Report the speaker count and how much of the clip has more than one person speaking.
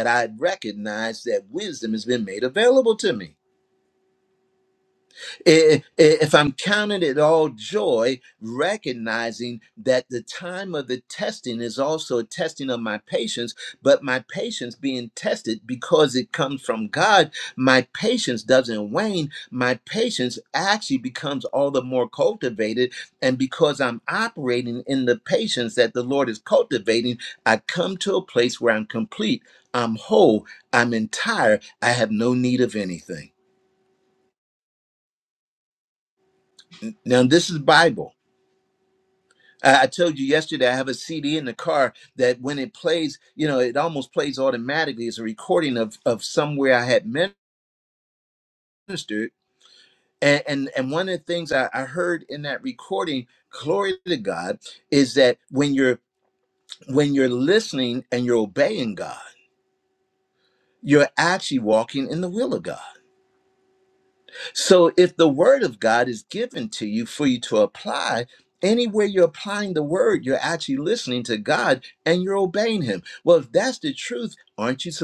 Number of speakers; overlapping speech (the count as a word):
one, no overlap